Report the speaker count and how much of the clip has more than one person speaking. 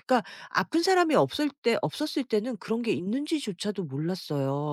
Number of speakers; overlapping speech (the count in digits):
1, no overlap